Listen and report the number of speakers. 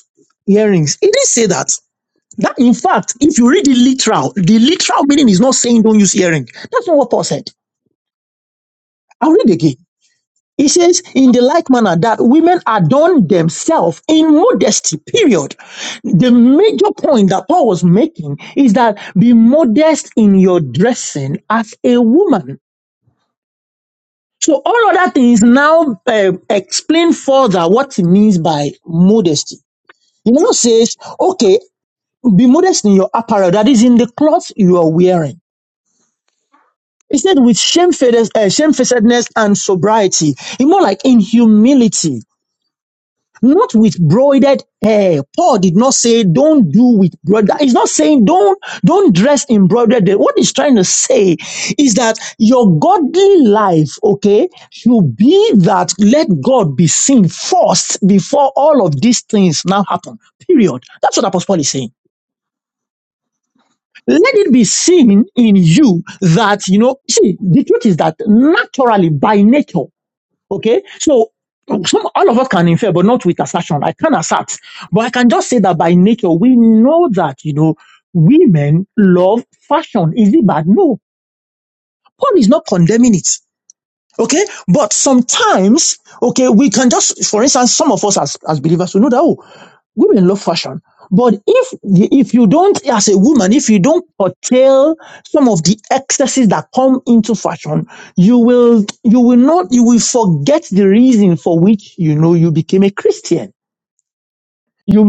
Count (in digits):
1